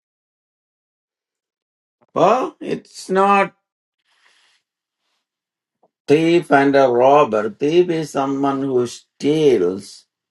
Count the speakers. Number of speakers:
1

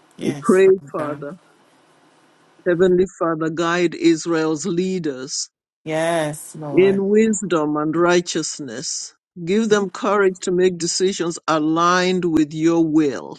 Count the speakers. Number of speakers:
2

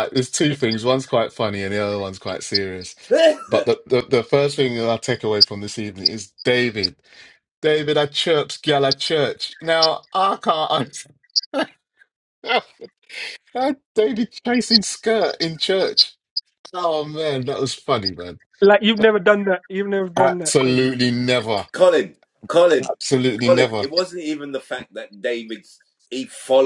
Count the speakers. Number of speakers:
3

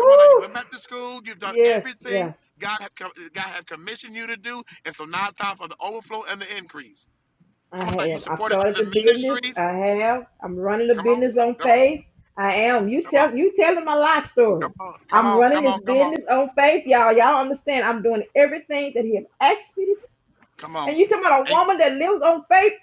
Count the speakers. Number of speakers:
2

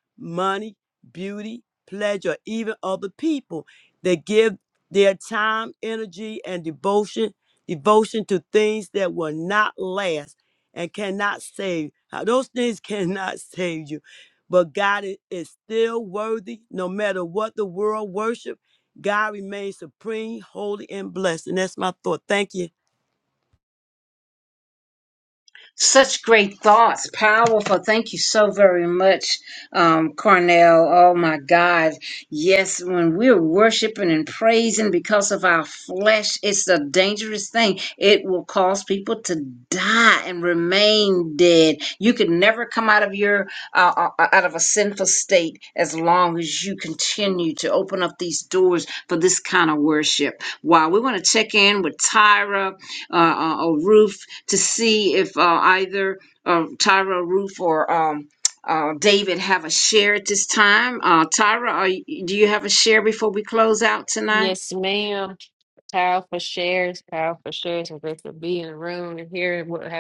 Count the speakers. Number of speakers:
3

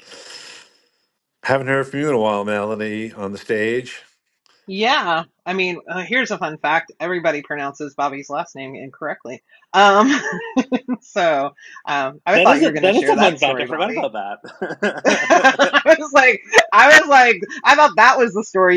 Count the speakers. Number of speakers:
3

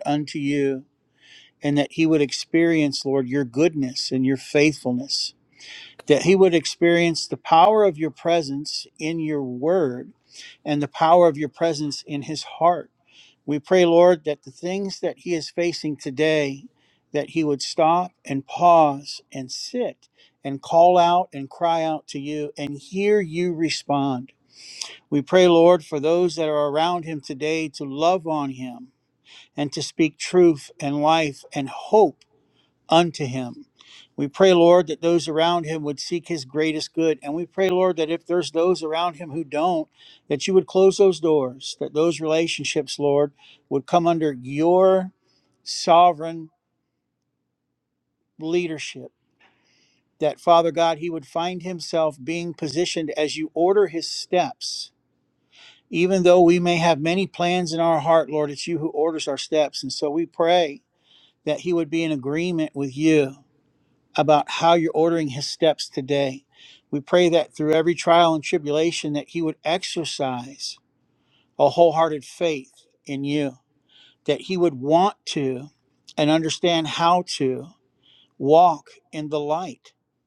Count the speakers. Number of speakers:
1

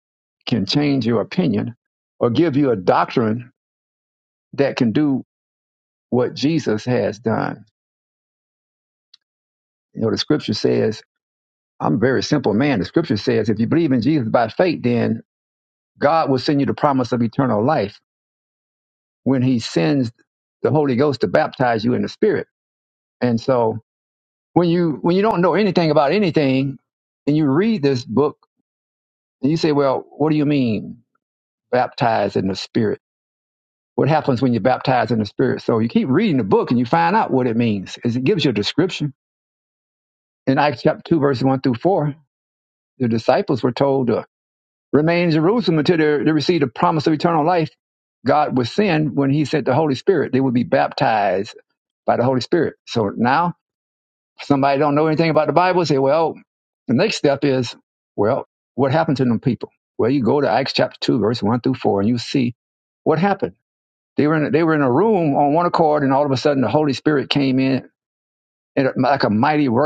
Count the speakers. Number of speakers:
1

